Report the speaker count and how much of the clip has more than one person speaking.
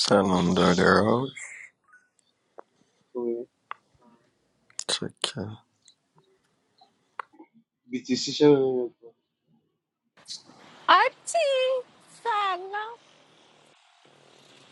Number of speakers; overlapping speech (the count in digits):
3, no overlap